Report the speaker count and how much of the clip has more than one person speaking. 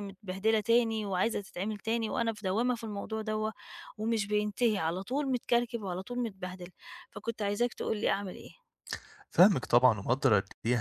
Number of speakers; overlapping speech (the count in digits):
2, no overlap